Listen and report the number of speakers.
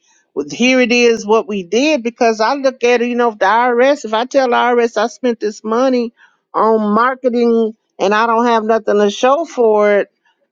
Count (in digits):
1